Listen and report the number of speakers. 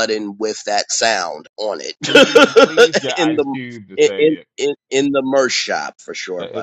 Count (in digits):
2